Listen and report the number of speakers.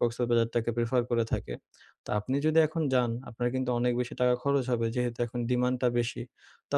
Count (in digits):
1